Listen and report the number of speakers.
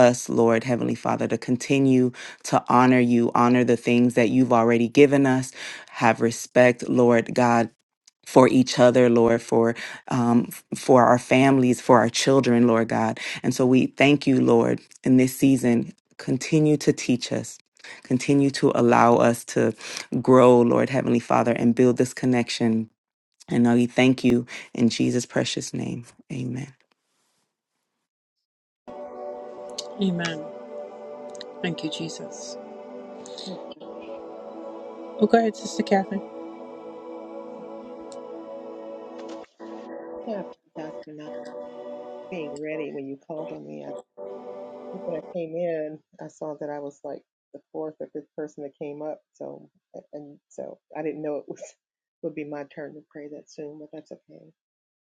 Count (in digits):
3